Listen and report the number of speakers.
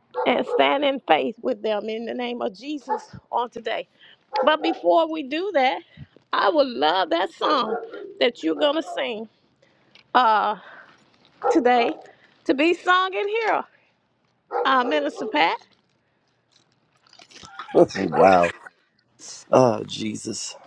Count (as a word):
two